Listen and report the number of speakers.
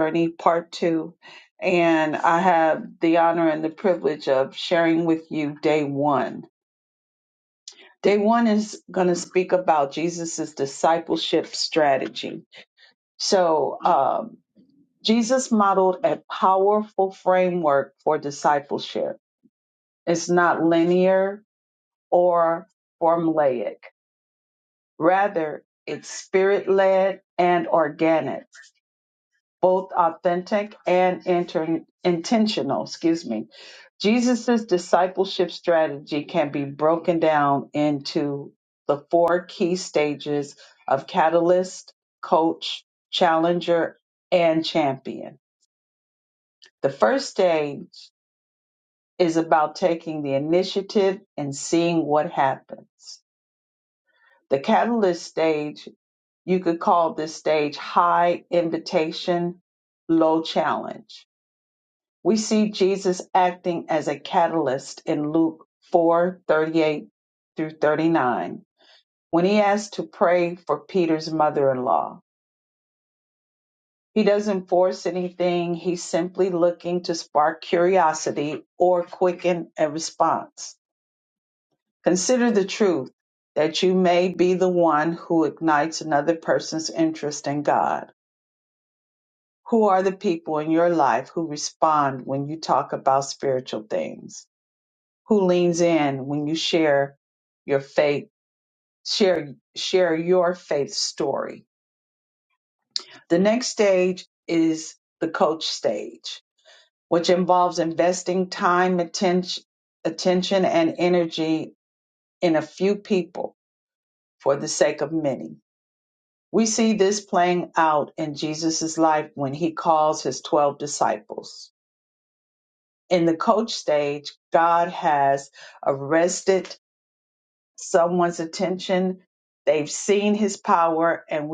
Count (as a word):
one